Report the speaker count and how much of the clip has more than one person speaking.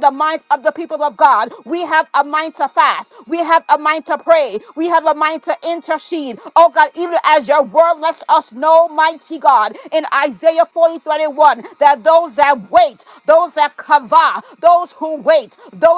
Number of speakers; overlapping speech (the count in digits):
1, no overlap